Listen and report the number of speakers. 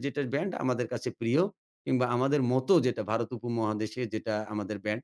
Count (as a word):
one